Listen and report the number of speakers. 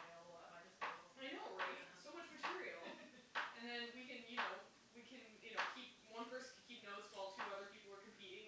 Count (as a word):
two